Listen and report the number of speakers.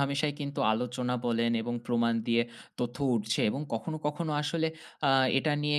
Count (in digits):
1